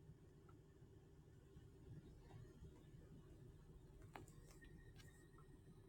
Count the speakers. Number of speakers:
0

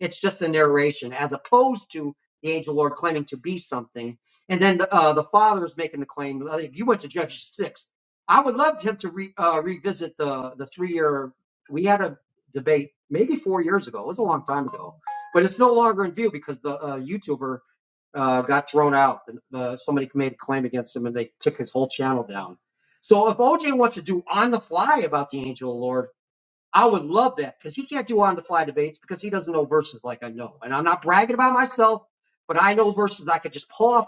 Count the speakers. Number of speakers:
1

